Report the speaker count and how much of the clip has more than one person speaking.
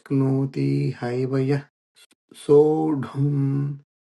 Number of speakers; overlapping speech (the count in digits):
1, no overlap